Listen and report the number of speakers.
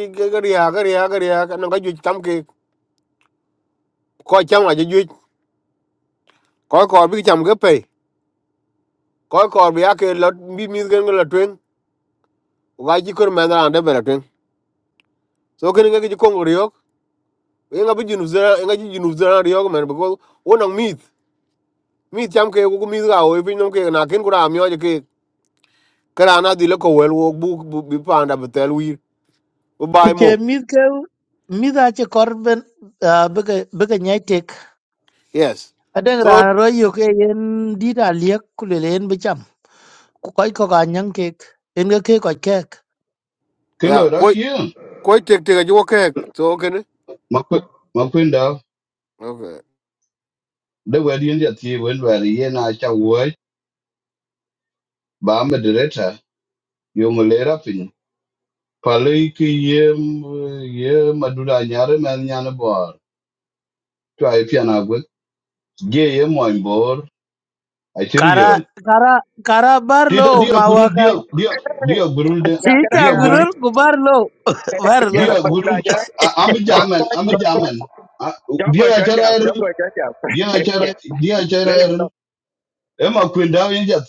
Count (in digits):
4